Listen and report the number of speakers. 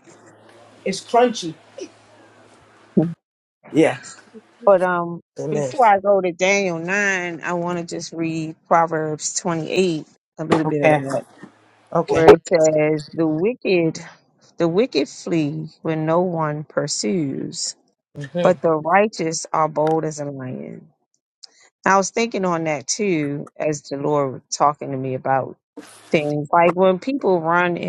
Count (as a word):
two